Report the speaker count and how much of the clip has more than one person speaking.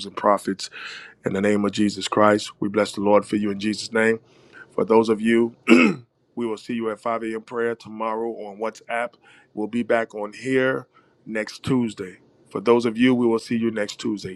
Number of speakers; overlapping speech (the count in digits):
1, no overlap